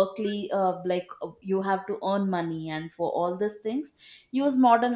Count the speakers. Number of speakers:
1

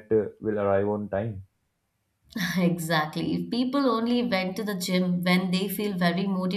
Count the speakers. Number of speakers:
2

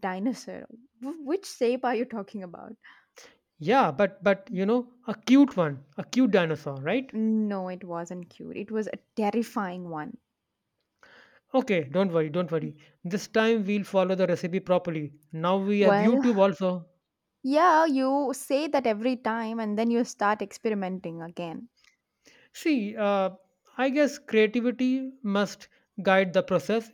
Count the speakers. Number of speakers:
2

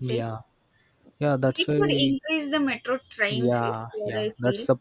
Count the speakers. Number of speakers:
2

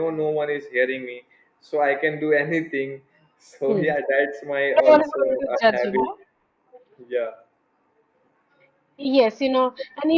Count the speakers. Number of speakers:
2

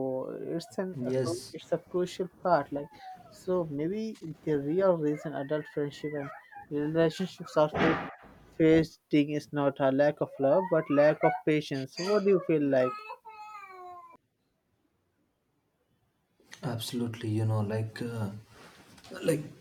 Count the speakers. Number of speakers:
2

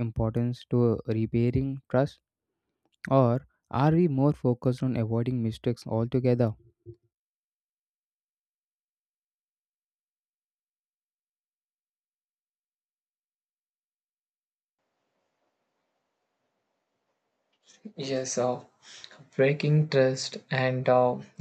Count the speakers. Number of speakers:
2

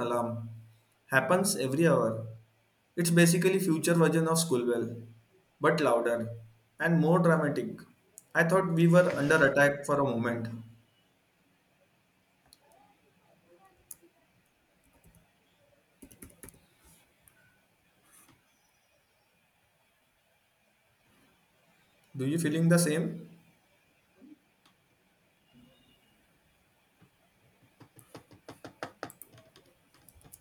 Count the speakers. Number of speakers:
1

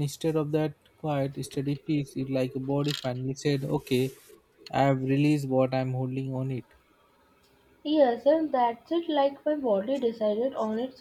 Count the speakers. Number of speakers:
2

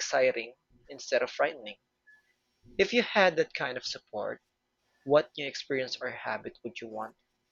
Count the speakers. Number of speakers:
1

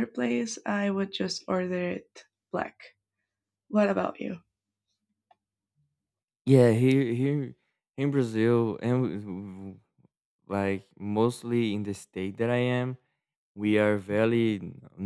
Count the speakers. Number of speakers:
2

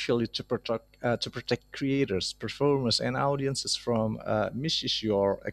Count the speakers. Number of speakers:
1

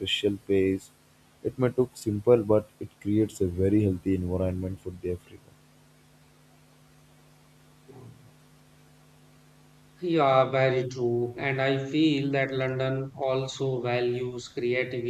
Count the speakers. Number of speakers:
2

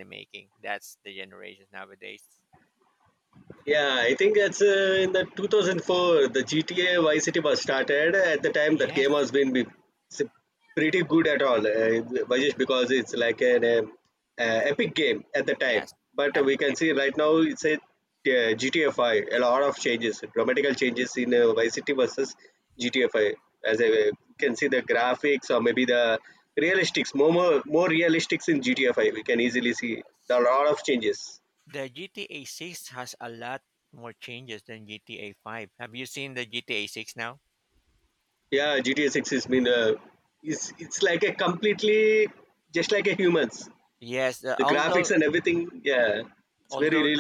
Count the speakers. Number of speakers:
2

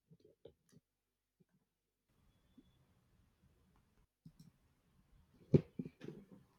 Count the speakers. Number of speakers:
0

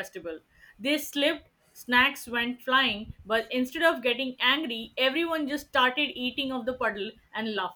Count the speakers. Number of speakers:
1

